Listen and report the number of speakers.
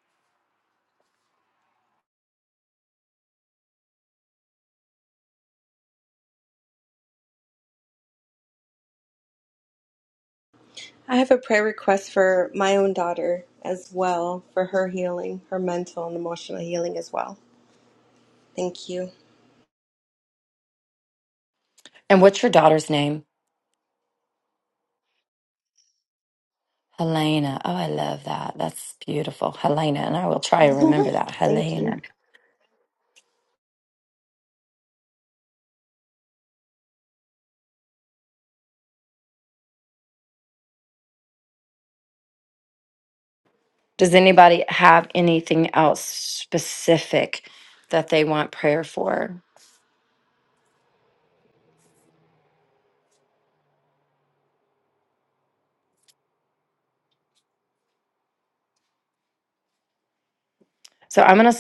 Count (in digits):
2